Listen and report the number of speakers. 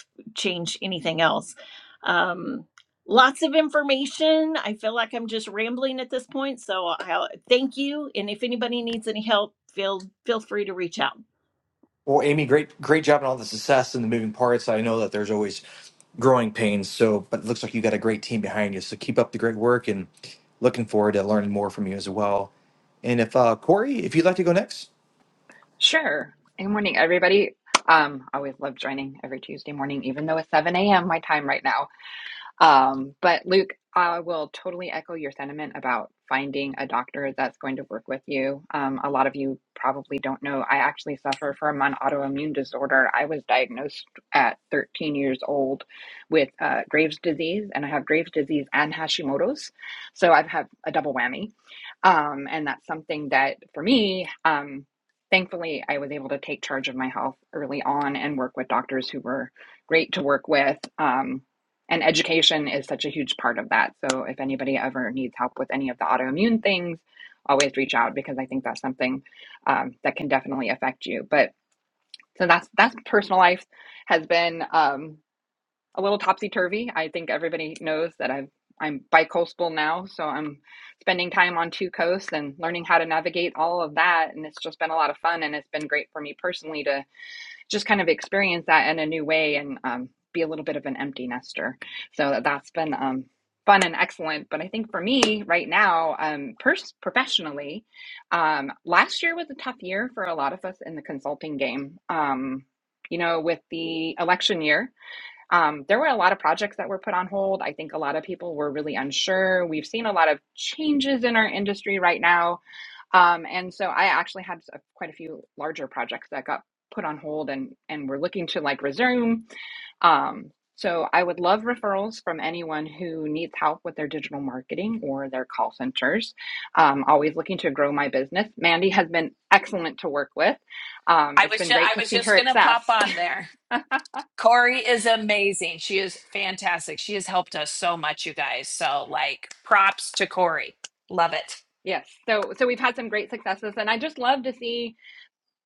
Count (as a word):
four